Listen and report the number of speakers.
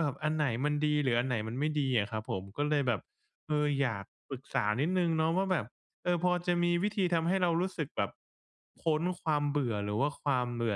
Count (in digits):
1